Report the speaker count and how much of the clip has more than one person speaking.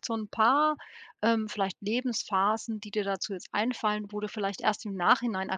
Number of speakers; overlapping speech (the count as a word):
one, no overlap